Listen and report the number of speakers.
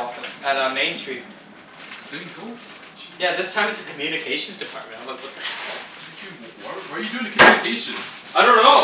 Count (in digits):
2